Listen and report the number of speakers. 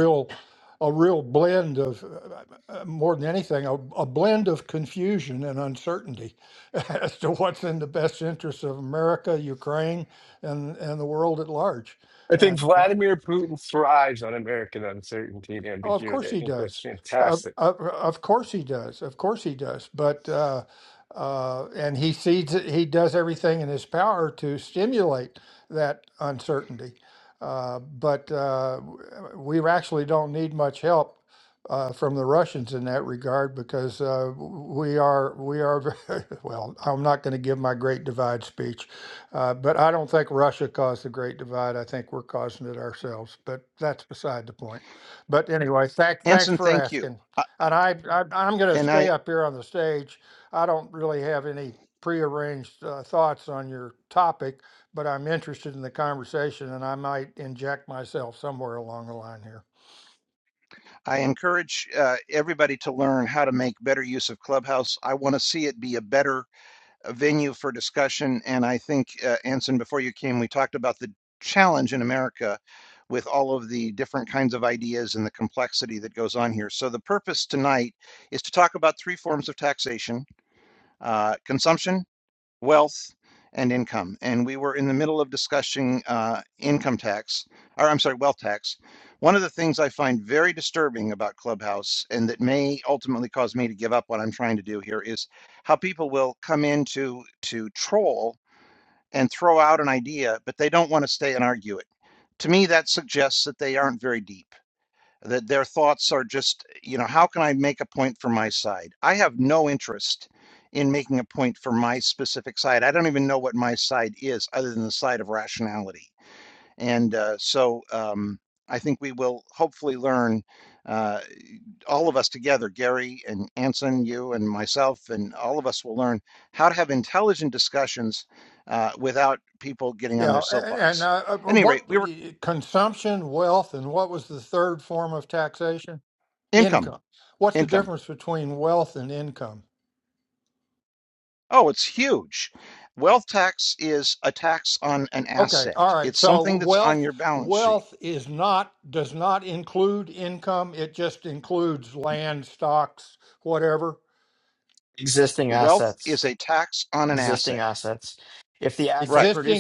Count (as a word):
four